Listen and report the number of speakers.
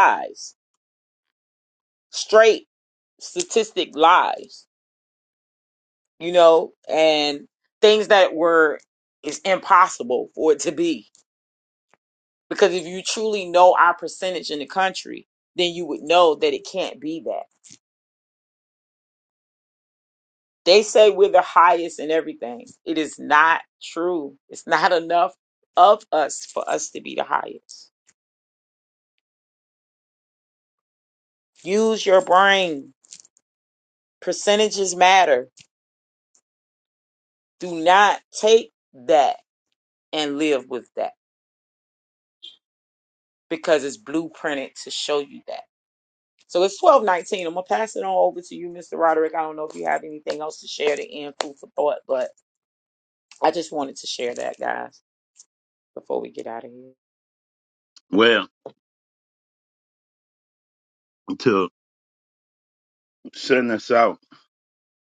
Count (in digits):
2